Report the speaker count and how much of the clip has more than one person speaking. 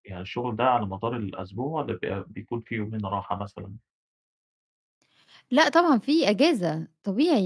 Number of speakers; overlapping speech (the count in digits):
2, no overlap